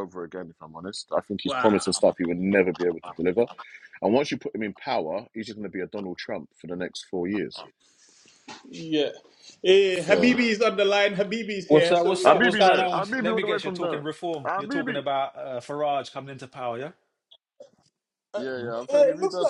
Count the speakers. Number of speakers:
3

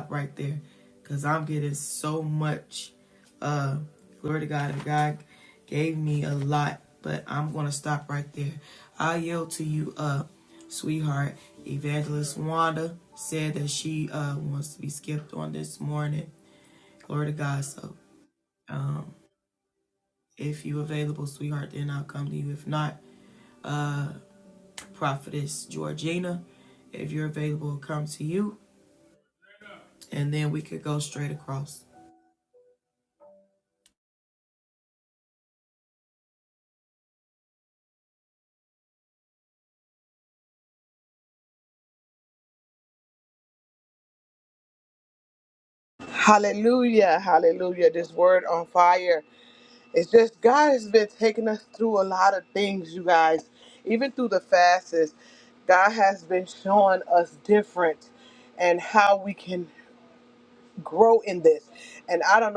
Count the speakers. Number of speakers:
2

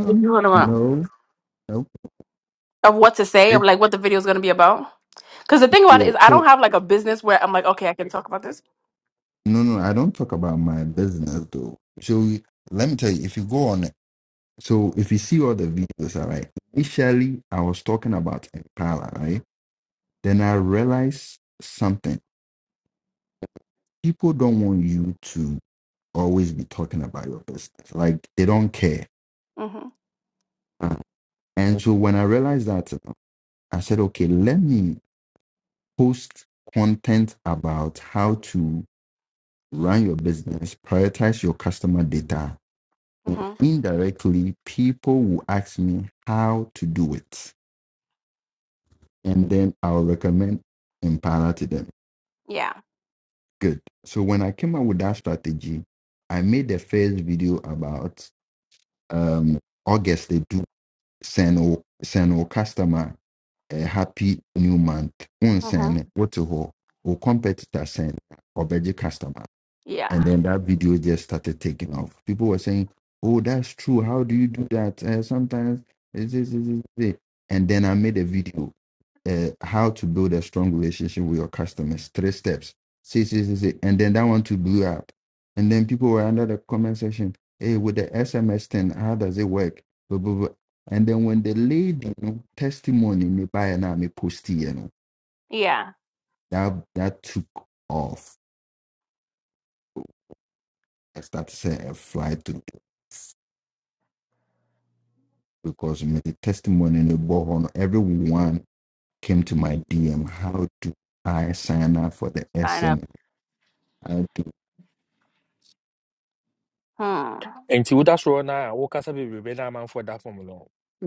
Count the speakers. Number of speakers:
3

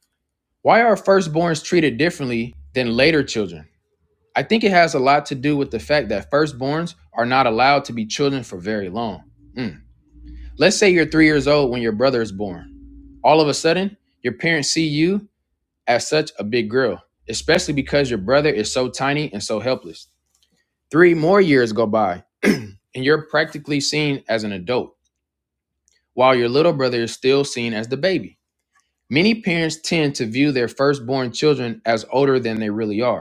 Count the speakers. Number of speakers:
1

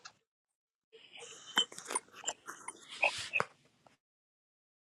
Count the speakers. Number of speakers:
0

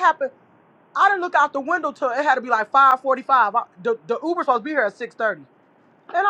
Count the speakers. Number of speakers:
1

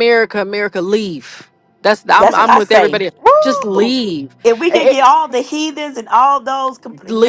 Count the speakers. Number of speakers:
2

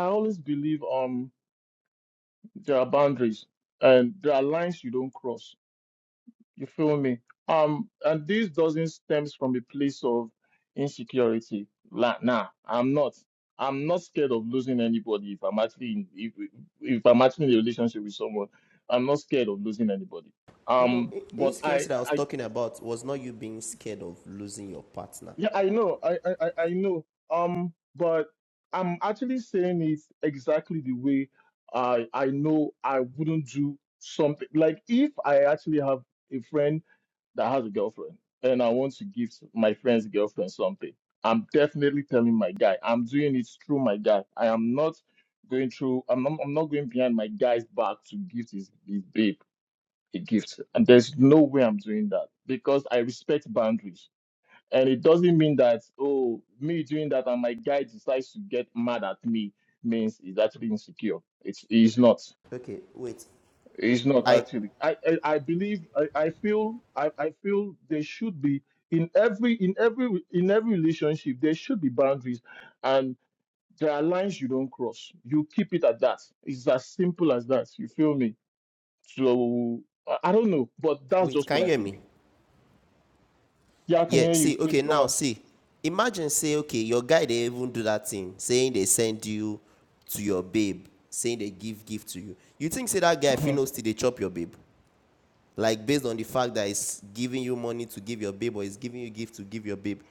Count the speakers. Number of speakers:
2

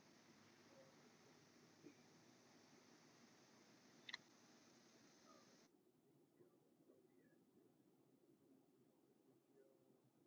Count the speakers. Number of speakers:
0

